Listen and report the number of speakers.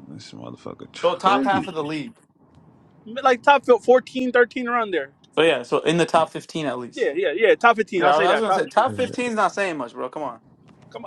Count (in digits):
3